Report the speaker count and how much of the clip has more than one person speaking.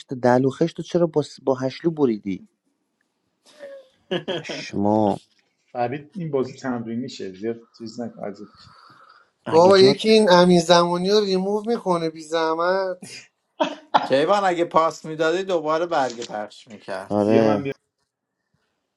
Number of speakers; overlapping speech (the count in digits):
4, about 4%